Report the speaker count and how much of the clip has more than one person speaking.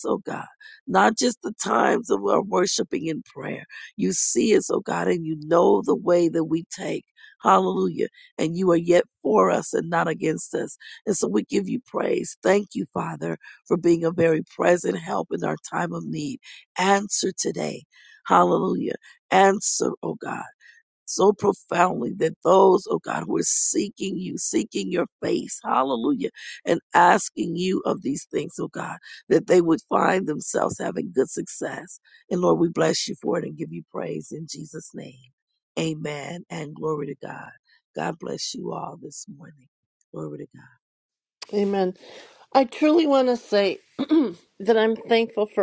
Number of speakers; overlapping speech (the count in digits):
2, no overlap